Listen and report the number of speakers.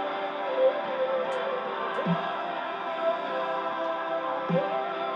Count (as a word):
zero